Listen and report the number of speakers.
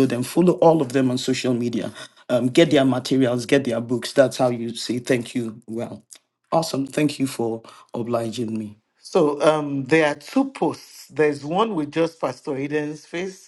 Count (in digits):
2